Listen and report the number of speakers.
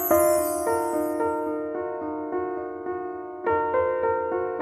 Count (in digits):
0